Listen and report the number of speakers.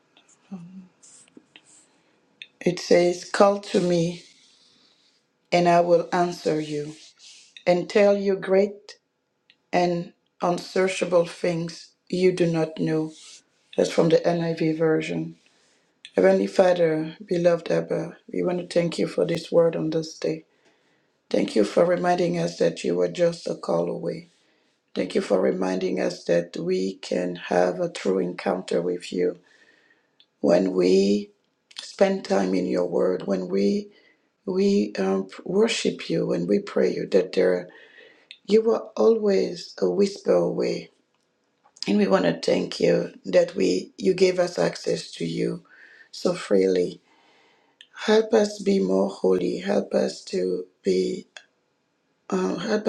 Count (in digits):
1